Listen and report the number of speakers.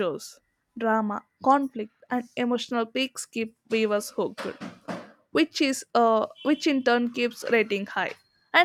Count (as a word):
one